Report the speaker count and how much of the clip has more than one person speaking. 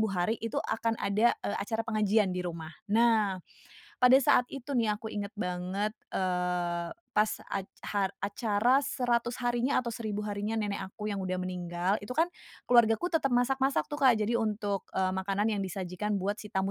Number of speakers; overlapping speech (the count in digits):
1, no overlap